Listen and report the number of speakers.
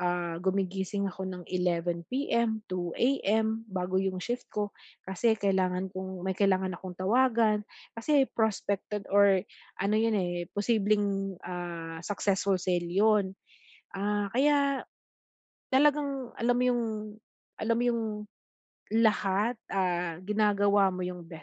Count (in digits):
1